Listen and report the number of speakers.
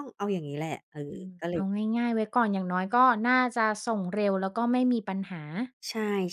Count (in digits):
2